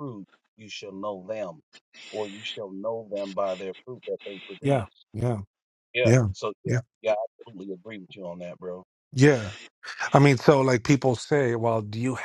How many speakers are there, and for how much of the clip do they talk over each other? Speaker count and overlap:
2, about 4%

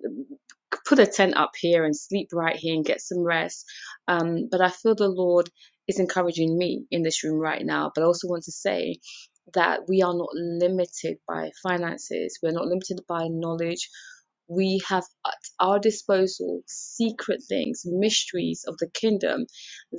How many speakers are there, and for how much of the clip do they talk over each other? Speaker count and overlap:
1, no overlap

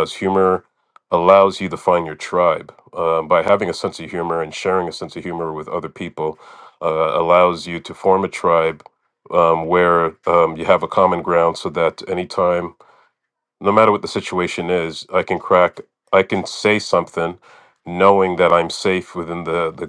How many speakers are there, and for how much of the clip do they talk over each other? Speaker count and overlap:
1, no overlap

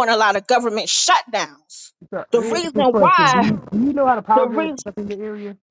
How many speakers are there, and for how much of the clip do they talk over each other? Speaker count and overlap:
2, about 29%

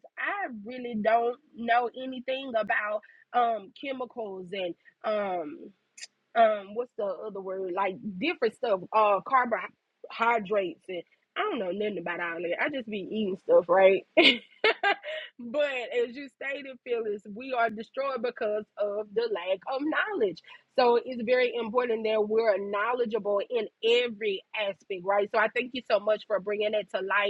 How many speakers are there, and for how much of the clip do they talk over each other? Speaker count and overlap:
1, no overlap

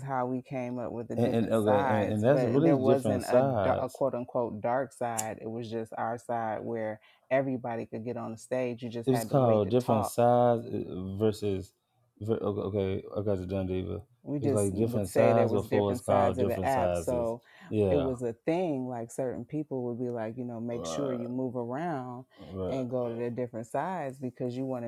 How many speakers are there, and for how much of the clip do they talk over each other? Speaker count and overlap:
2, about 31%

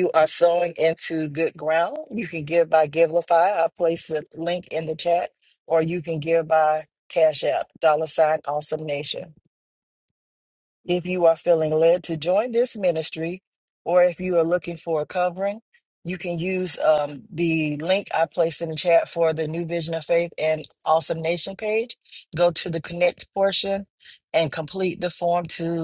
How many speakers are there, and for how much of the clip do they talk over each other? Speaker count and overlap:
1, no overlap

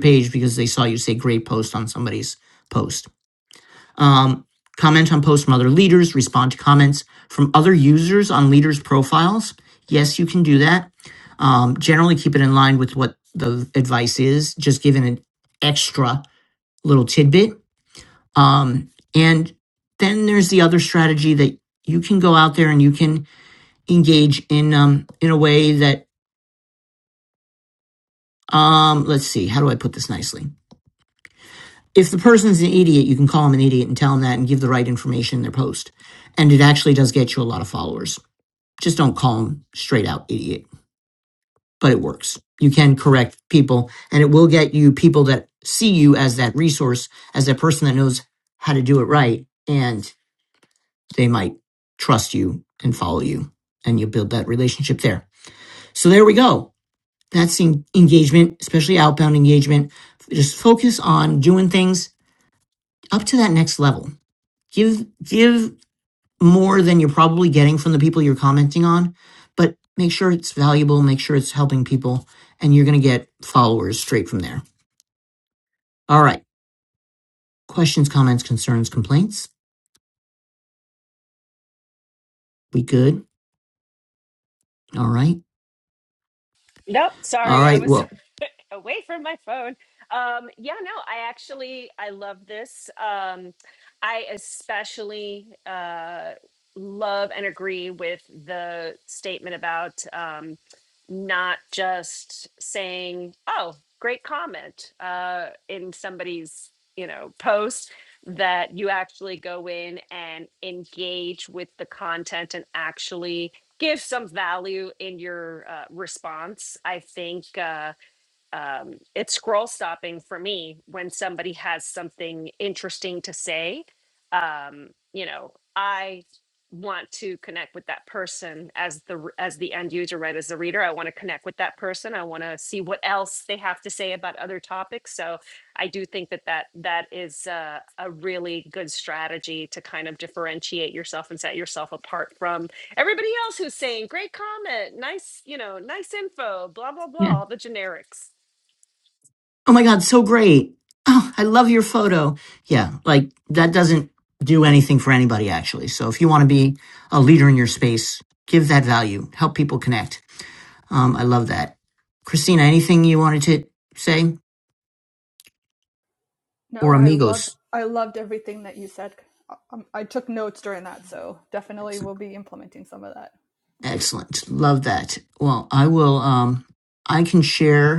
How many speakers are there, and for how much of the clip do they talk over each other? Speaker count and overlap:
3, about 1%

